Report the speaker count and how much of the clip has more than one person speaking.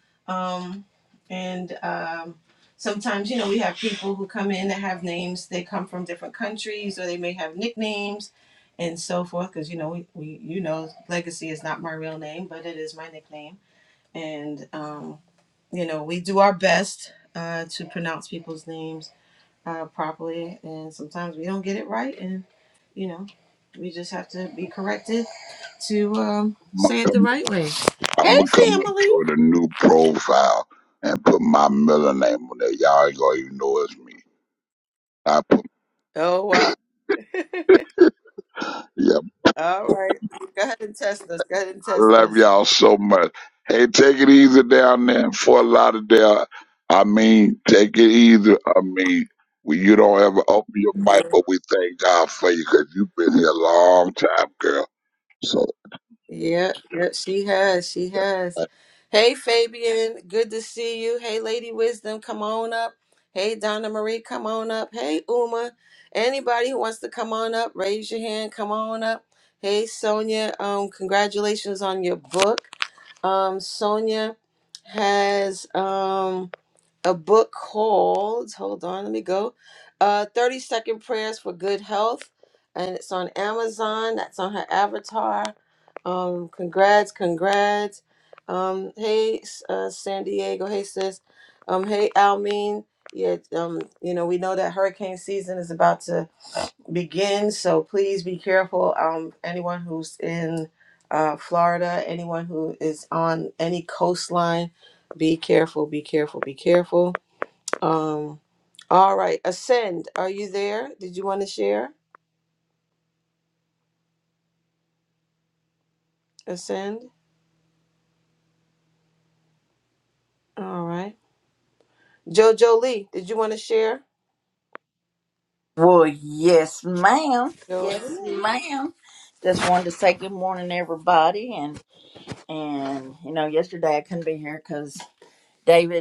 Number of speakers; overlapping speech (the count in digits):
3, about 2%